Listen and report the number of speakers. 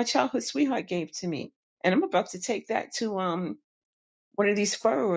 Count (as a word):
one